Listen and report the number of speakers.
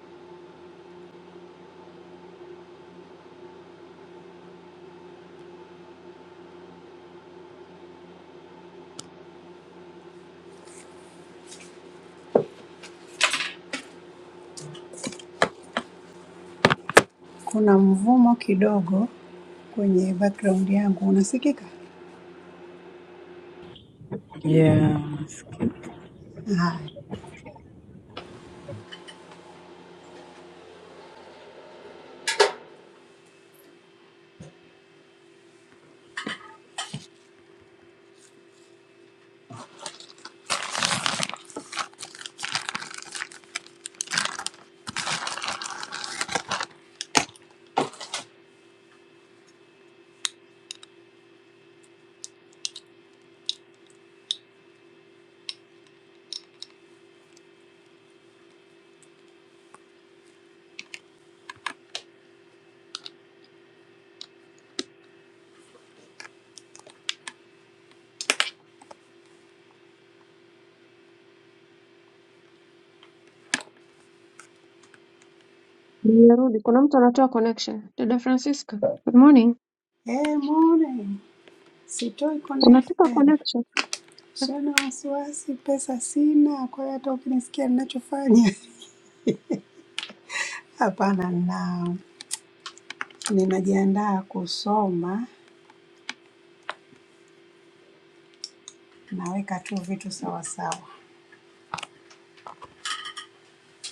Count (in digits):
3